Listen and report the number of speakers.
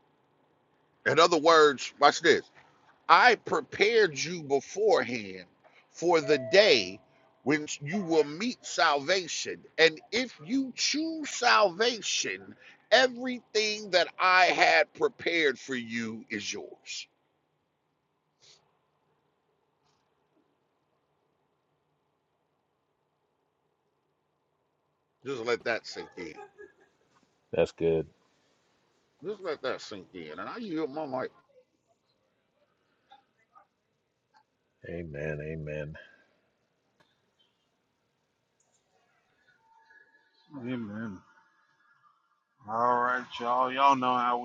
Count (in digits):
3